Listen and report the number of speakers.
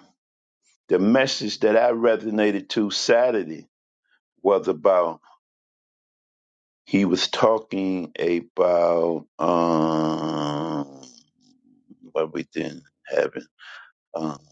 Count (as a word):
one